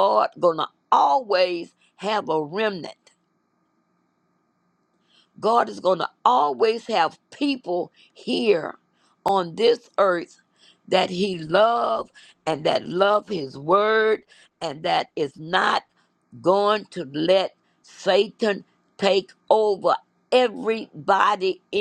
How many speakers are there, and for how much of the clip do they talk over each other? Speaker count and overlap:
1, no overlap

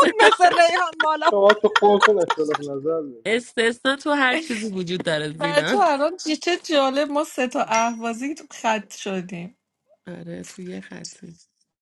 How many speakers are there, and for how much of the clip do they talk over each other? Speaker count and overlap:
4, about 5%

